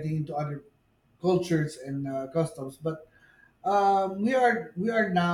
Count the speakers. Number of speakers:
1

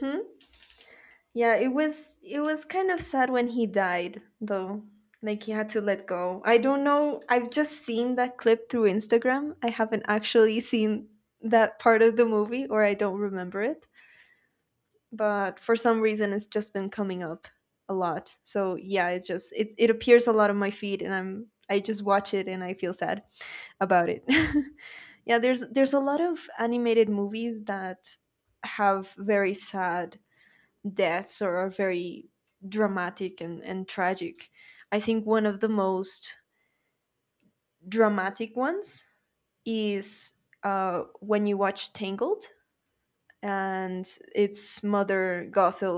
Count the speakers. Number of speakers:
1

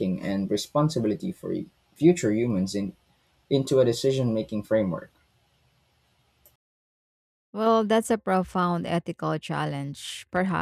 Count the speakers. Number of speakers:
2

